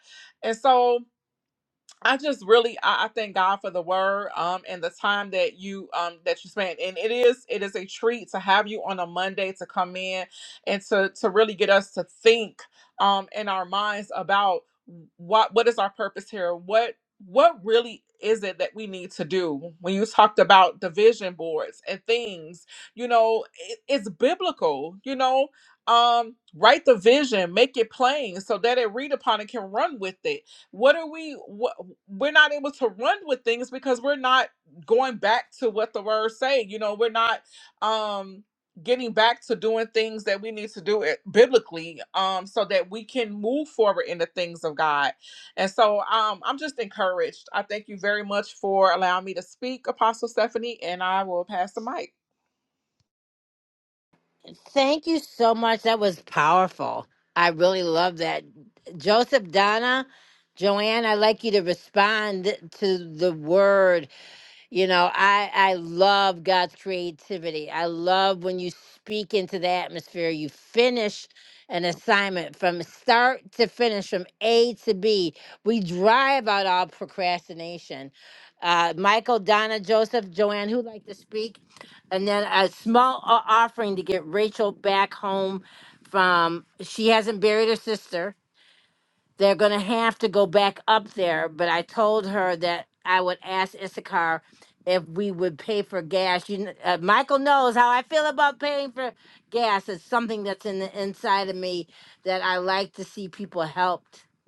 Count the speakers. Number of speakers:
2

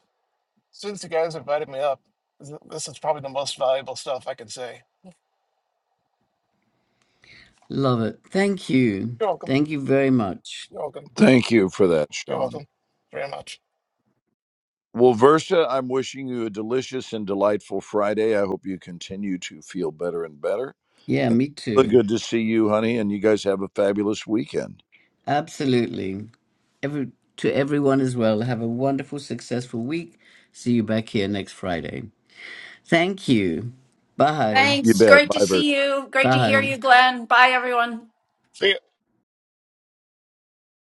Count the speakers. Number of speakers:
4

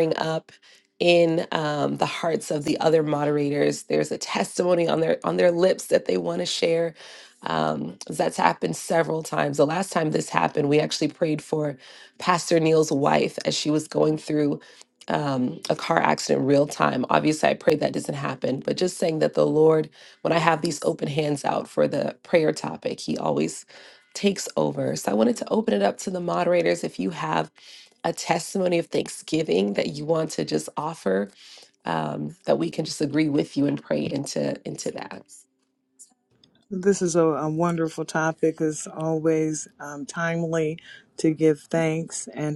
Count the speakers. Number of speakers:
2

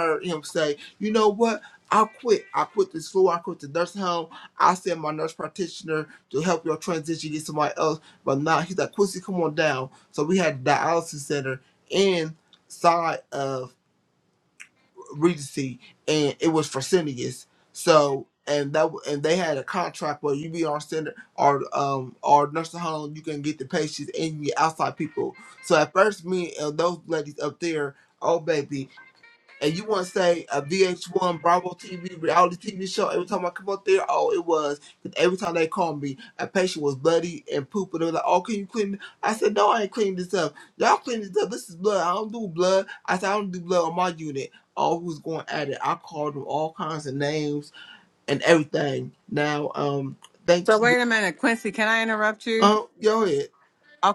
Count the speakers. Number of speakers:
2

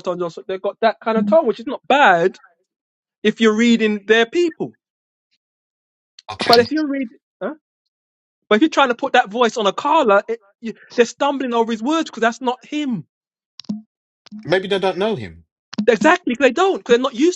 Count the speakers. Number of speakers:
2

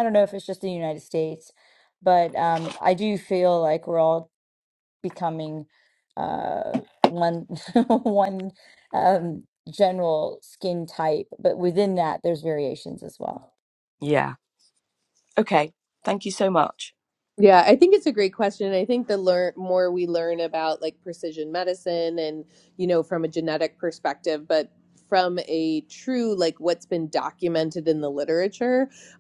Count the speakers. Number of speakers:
3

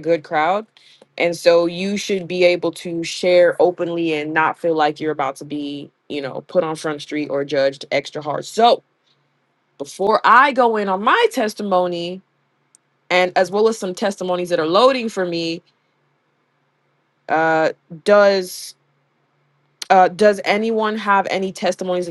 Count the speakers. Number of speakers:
1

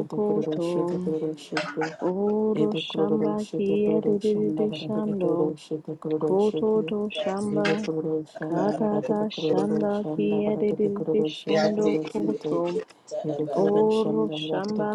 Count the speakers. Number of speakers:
3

